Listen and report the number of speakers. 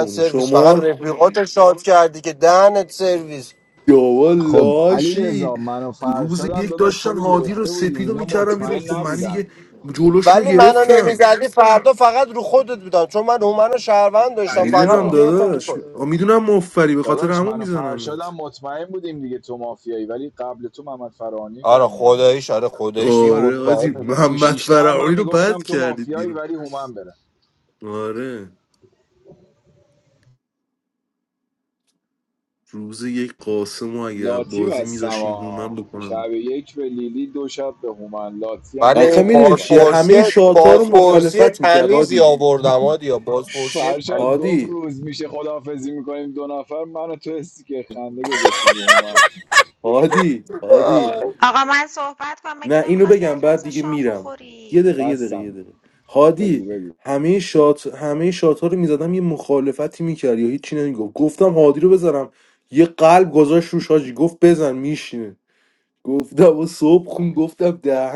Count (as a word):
four